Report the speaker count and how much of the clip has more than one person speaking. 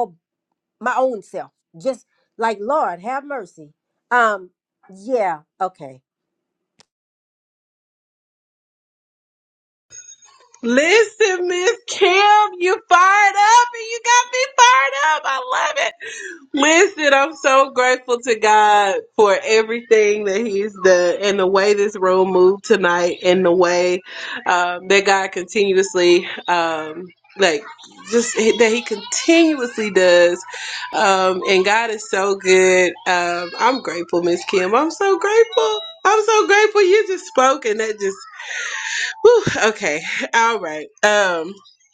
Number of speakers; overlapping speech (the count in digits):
2, no overlap